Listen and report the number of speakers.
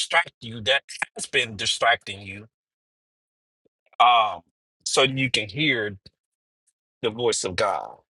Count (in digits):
1